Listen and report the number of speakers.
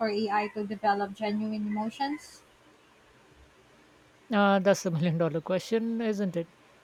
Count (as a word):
two